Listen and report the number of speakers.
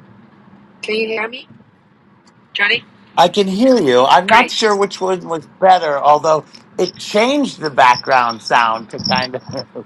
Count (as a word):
two